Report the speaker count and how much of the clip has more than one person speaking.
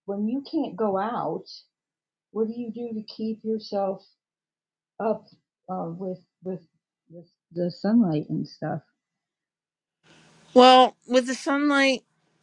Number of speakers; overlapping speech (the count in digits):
2, no overlap